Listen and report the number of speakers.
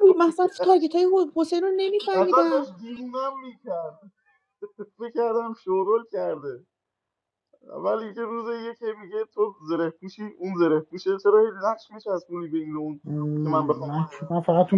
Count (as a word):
three